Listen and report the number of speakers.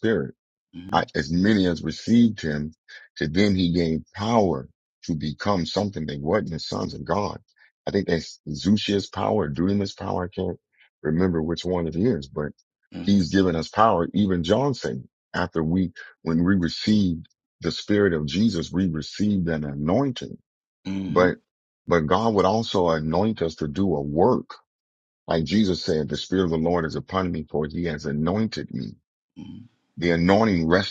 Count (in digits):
2